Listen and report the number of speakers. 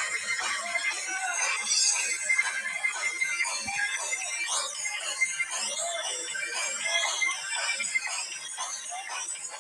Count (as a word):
zero